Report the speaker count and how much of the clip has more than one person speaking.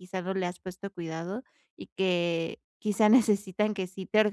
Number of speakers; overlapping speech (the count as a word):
one, no overlap